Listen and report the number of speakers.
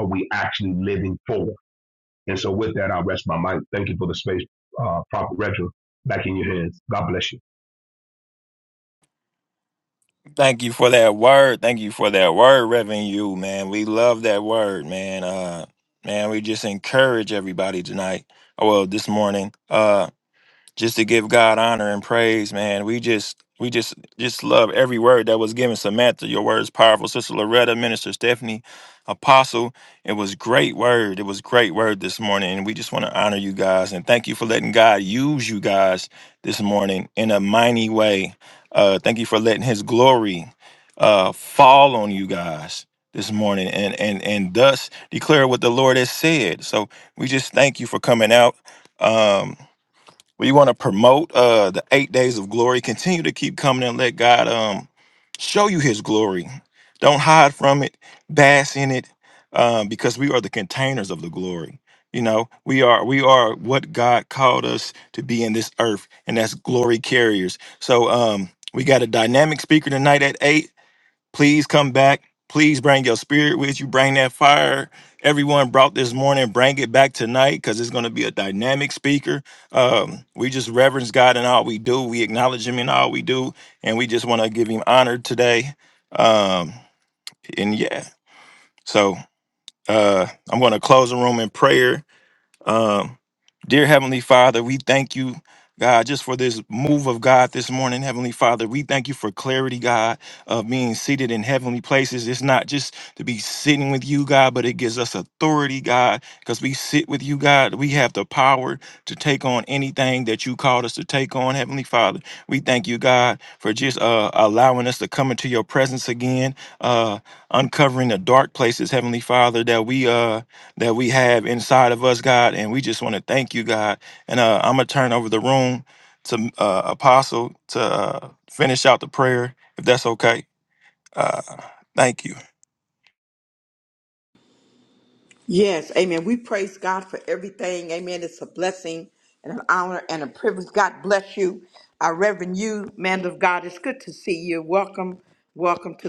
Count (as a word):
three